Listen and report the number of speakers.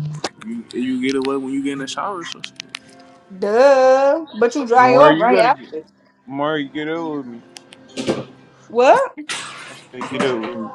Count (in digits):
3